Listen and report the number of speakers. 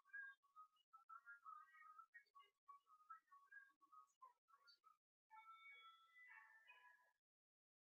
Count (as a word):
zero